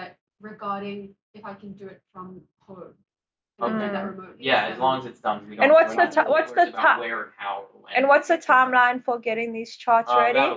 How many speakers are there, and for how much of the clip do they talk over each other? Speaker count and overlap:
3, about 35%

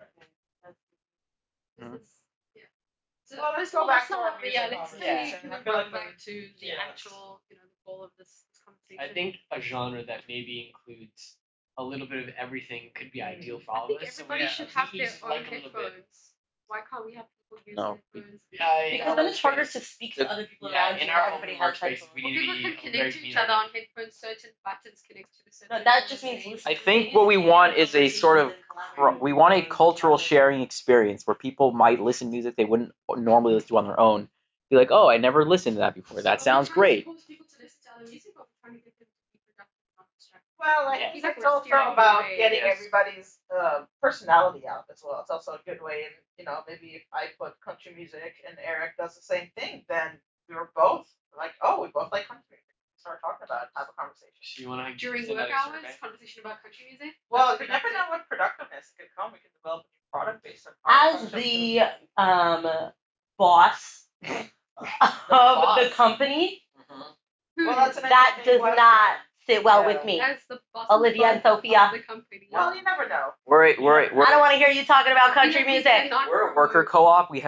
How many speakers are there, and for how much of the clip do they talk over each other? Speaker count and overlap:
5, about 36%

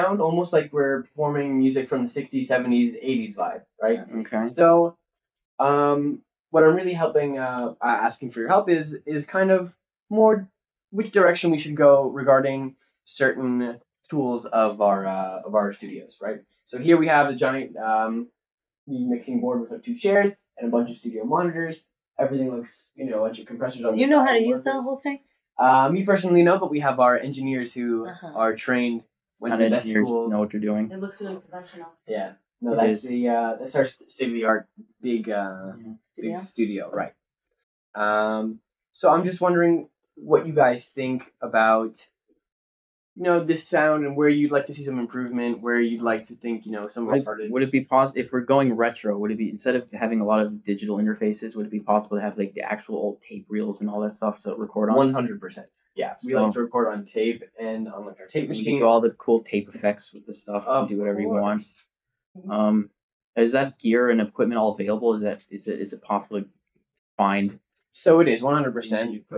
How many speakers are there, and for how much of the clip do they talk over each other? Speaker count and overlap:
3, about 11%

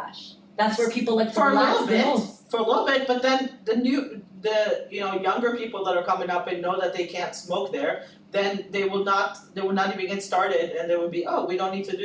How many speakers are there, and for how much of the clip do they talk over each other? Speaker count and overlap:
2, about 7%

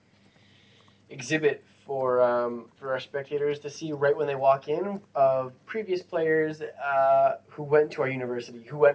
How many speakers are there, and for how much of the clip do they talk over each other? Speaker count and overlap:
1, no overlap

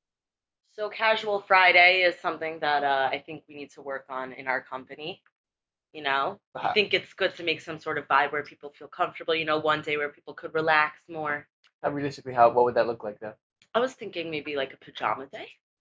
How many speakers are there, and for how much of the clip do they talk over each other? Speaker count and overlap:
2, no overlap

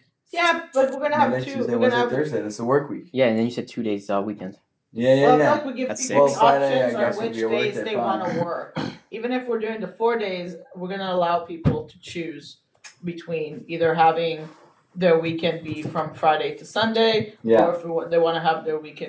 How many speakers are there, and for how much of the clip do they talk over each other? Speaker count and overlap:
3, about 22%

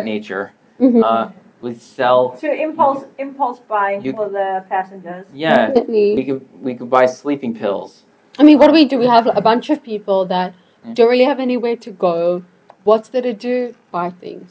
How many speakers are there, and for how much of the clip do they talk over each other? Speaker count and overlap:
3, about 16%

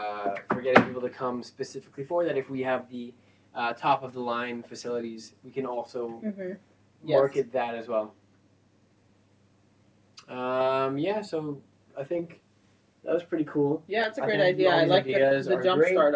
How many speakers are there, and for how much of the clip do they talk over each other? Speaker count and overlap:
2, about 12%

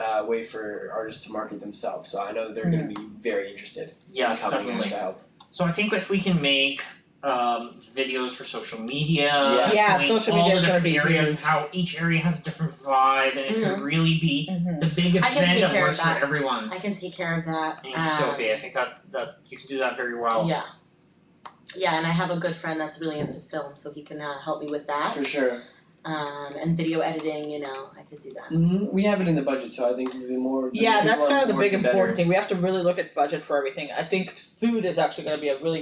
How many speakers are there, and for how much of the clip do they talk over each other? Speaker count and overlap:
4, about 20%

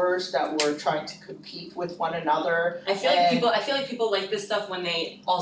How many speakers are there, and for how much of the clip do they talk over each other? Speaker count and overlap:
2, about 13%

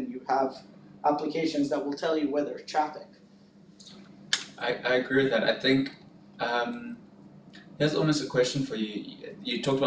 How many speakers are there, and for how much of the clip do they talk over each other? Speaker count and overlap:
2, no overlap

